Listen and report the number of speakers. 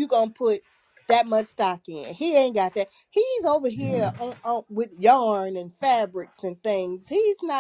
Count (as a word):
one